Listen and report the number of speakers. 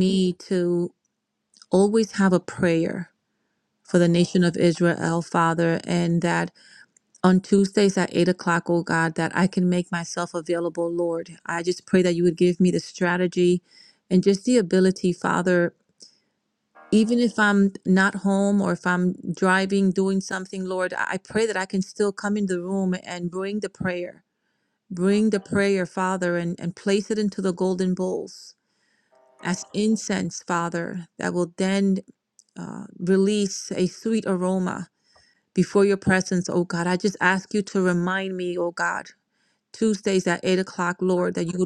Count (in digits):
1